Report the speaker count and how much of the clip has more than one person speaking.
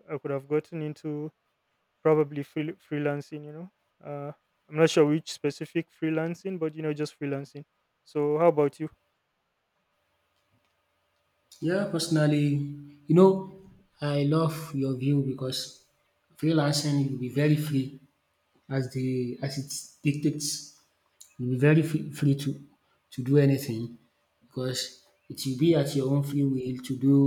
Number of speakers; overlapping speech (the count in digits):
2, no overlap